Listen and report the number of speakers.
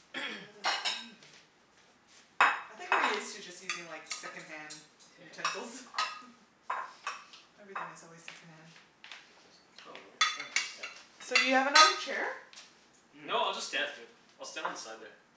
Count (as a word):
three